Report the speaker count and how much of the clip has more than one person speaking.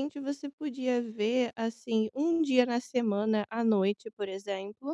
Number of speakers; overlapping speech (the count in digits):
1, no overlap